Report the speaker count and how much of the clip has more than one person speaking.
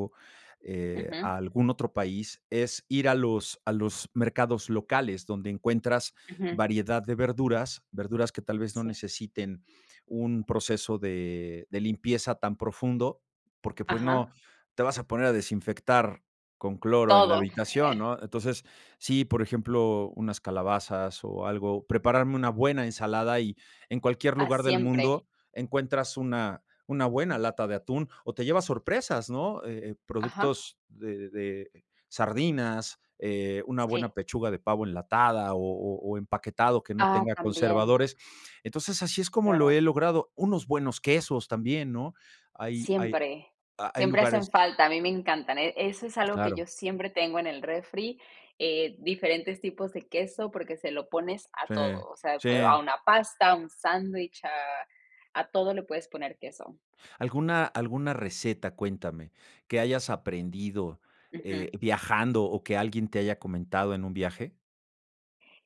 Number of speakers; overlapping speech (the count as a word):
two, about 9%